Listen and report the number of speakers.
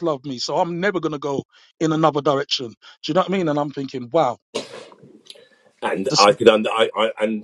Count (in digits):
2